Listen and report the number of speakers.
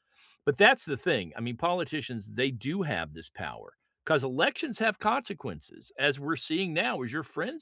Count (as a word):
one